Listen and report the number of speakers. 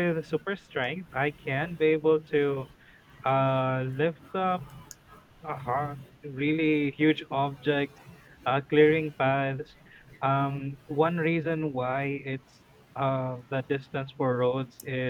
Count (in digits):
1